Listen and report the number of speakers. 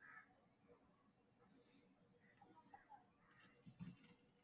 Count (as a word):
zero